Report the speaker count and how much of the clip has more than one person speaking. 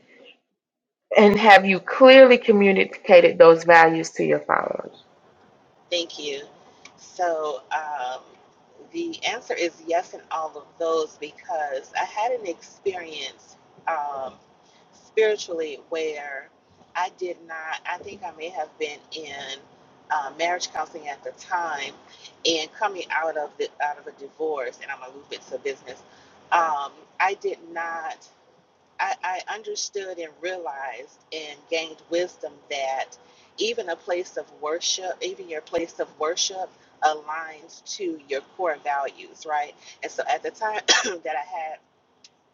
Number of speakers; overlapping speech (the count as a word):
two, no overlap